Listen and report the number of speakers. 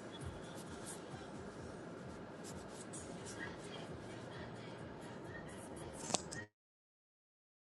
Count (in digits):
0